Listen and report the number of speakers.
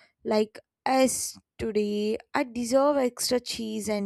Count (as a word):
one